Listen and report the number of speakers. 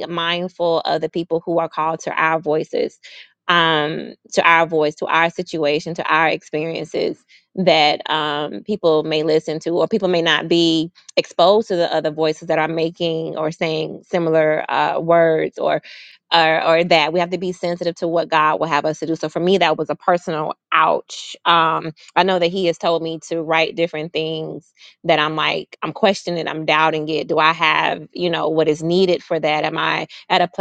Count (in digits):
1